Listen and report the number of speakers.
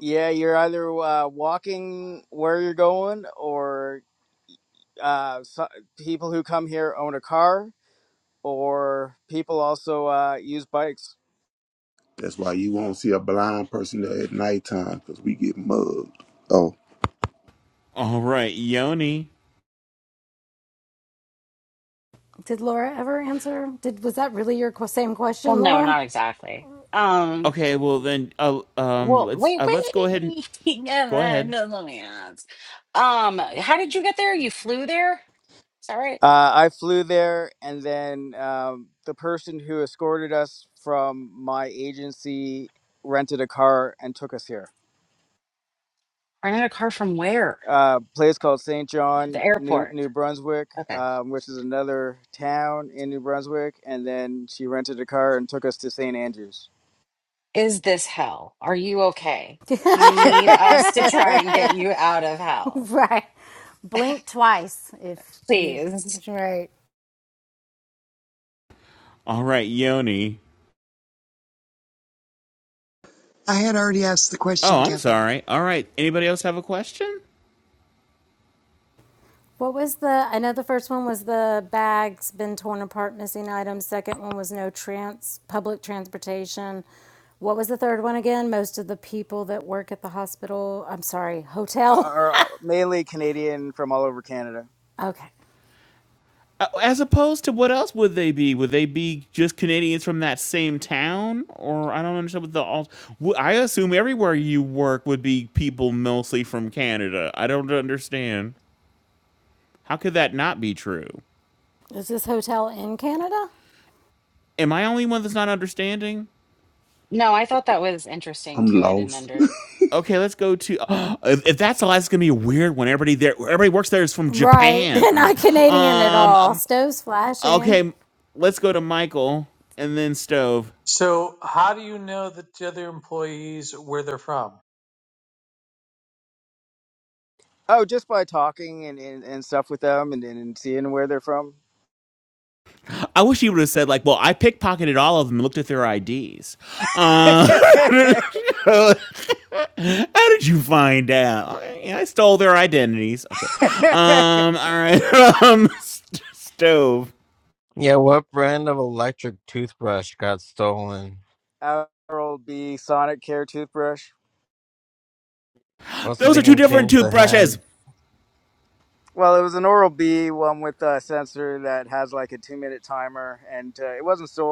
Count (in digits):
8